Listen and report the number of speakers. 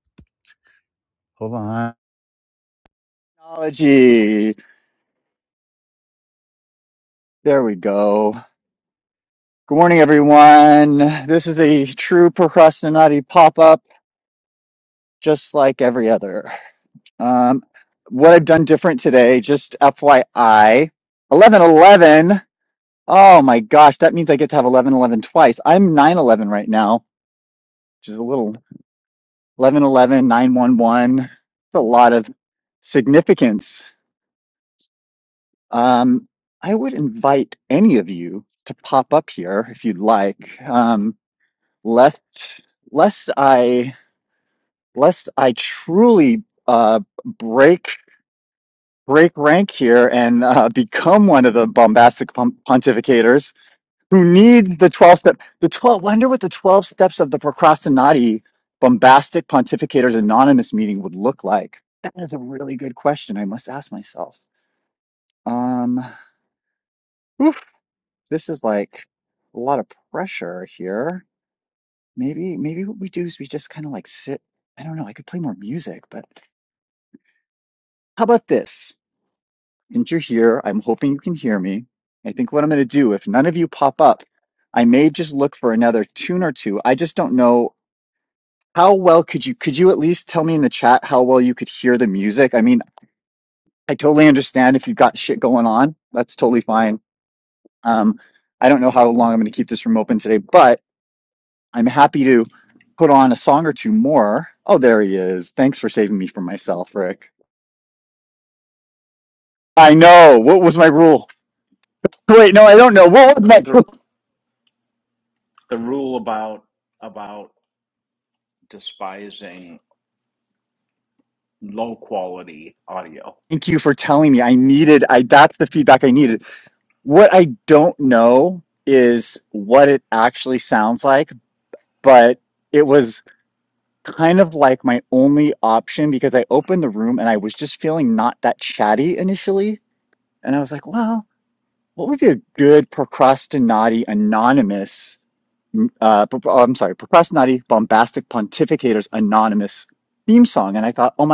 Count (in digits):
2